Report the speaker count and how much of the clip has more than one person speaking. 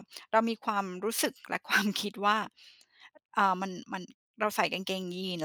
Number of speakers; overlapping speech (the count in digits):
1, no overlap